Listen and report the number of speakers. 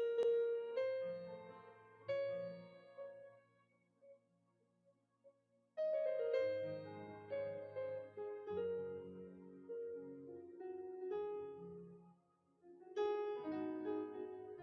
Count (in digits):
0